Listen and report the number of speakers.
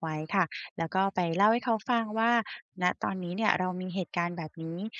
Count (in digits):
1